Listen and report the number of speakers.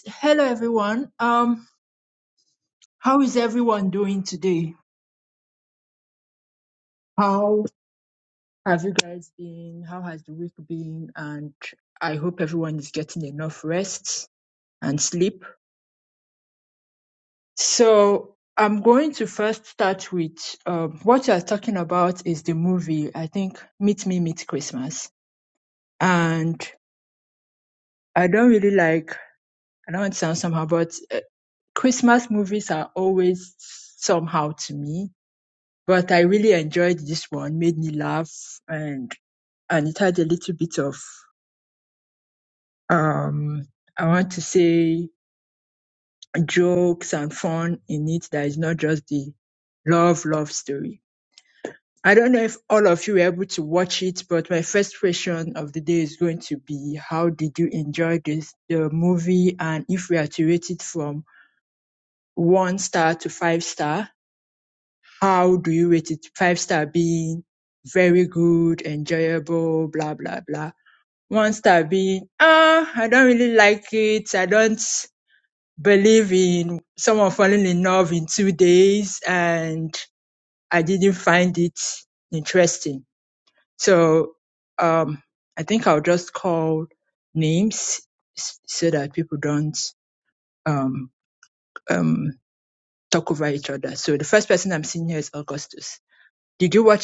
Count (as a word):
one